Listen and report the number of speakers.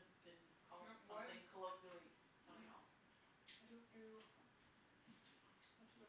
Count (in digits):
2